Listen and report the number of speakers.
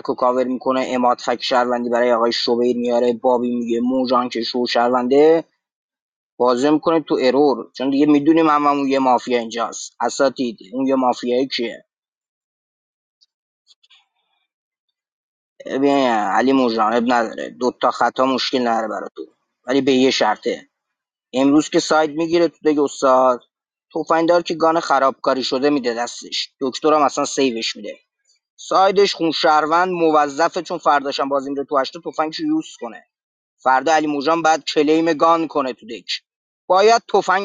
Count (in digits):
1